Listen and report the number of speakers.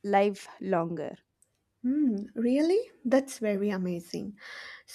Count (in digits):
2